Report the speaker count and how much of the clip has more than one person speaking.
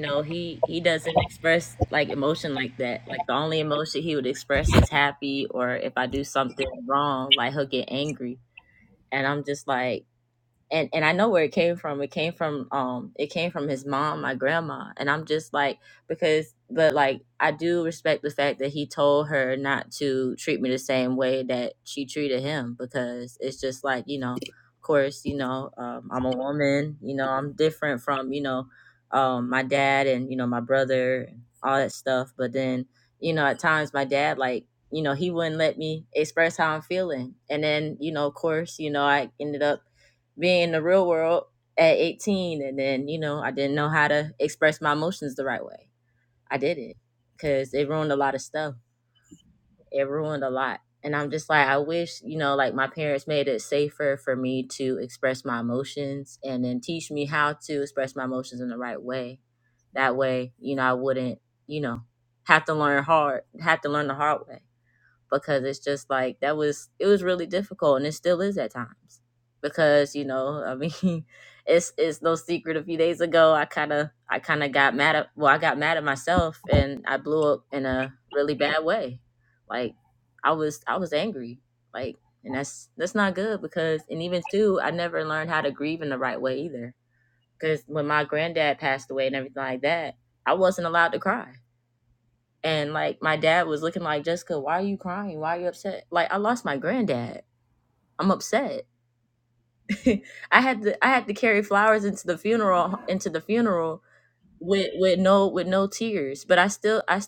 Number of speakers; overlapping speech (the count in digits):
1, no overlap